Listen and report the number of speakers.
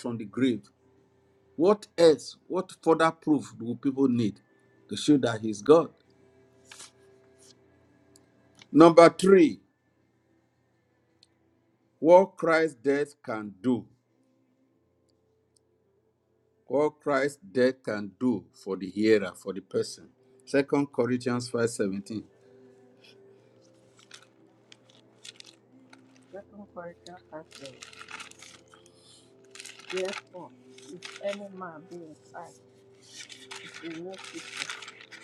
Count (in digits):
2